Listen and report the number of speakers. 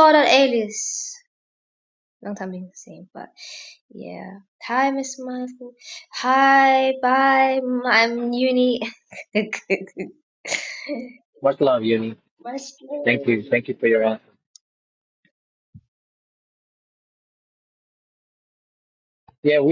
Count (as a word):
two